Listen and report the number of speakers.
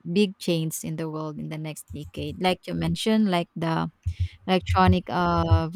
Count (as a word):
one